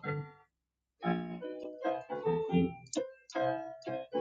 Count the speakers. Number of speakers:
0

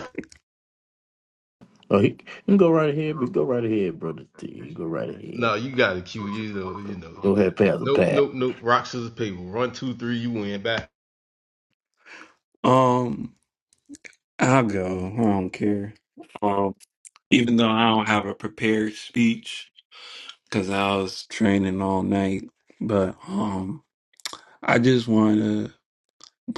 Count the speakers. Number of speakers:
3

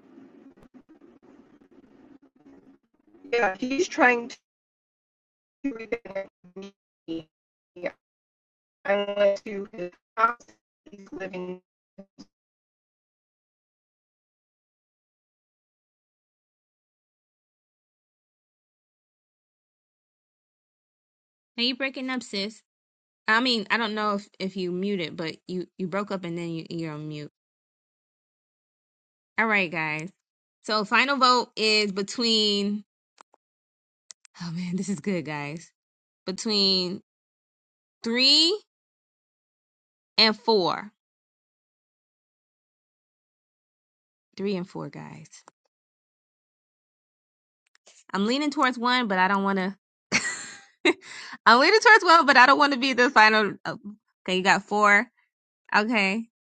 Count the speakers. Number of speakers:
2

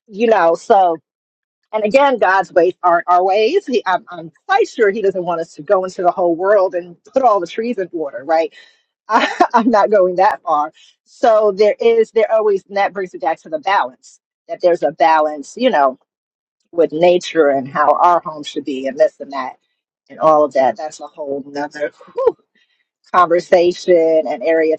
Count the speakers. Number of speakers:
1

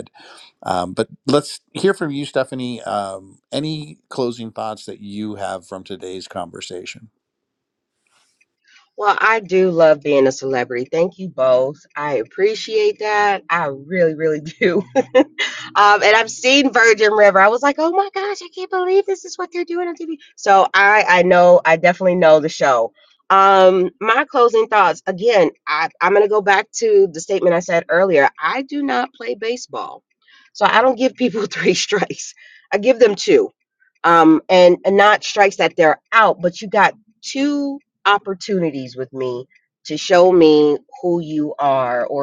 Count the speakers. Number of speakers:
2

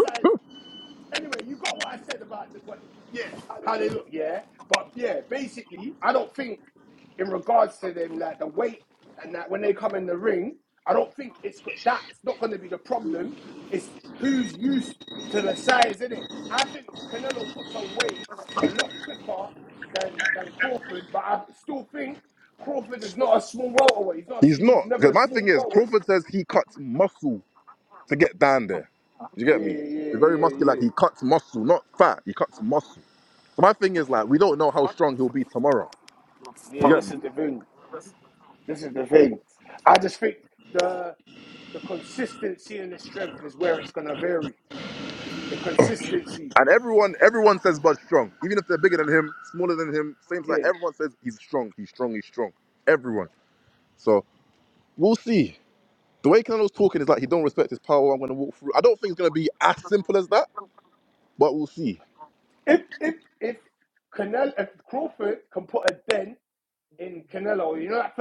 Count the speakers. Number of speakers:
2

